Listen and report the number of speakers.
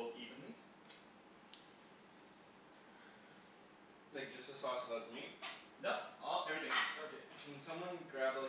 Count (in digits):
2